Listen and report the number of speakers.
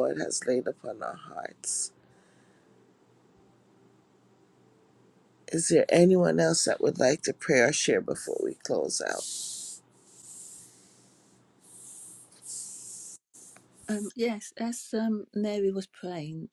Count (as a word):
two